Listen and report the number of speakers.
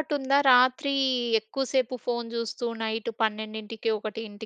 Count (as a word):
one